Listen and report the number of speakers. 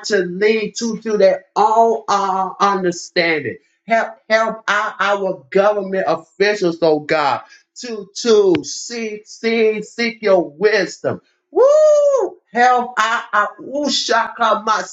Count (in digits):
1